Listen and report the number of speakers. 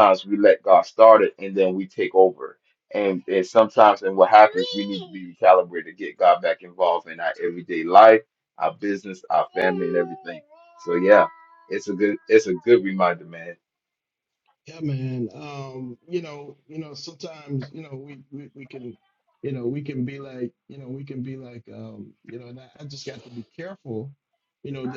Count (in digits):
2